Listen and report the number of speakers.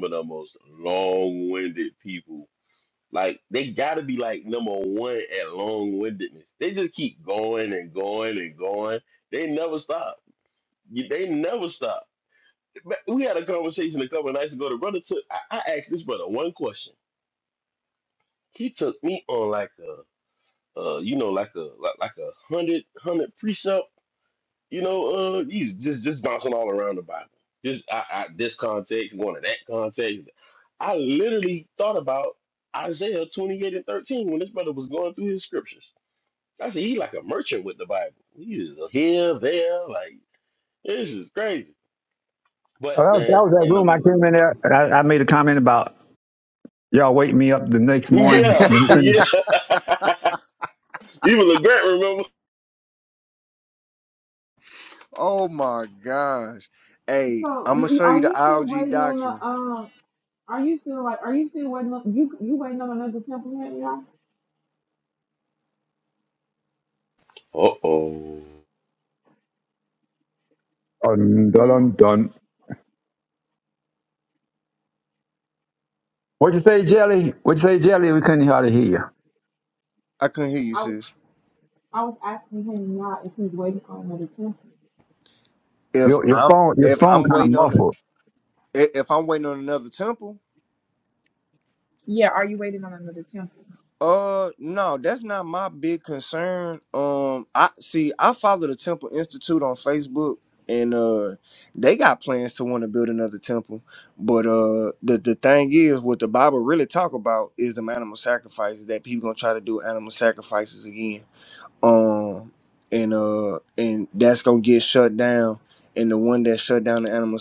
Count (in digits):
4